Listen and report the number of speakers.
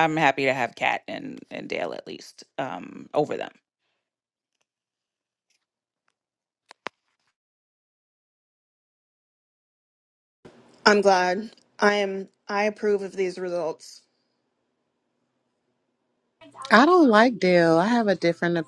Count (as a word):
three